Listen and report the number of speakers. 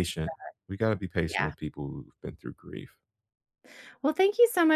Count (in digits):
2